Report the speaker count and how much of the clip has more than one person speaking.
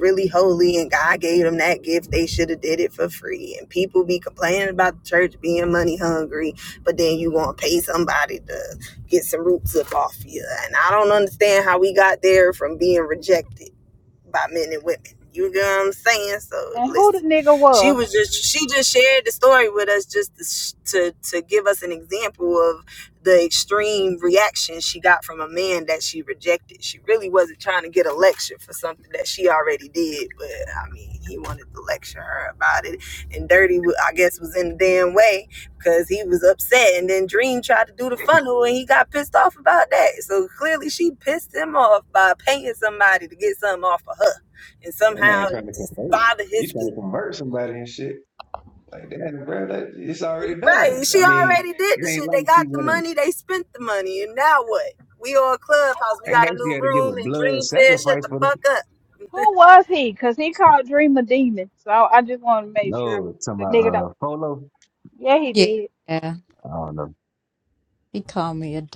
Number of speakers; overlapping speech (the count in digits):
4, about 12%